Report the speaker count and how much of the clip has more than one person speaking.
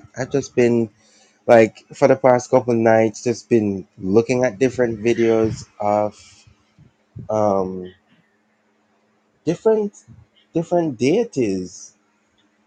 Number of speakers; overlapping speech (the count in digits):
1, no overlap